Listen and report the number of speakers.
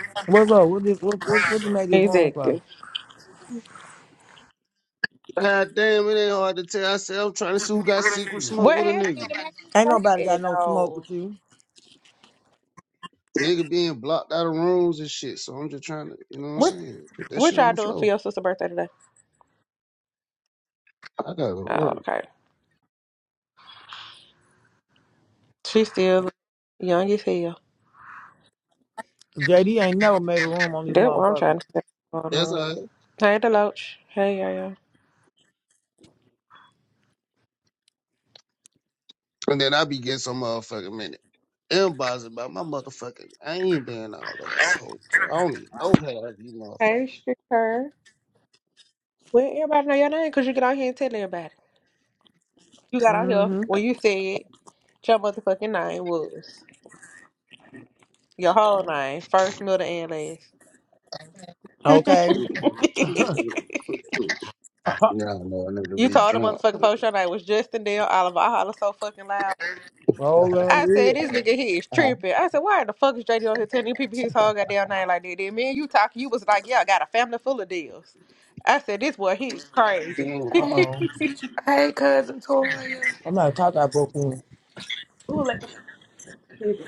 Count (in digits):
4